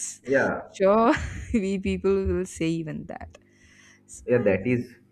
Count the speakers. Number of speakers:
2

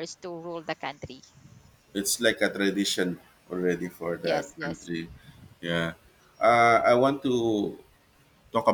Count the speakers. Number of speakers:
2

